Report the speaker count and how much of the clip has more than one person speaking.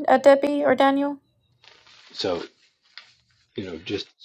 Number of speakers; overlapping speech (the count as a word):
two, no overlap